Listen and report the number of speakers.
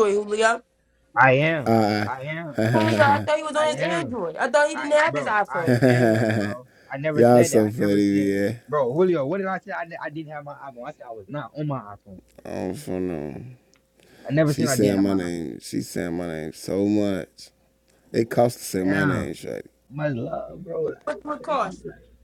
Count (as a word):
three